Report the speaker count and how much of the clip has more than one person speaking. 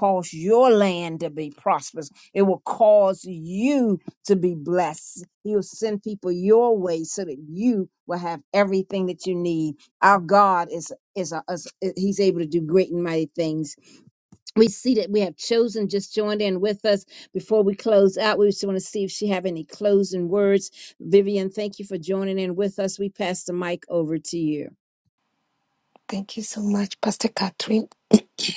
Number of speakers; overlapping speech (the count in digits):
2, no overlap